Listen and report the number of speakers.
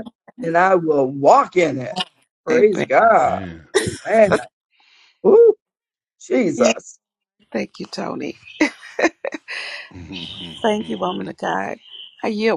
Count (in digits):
3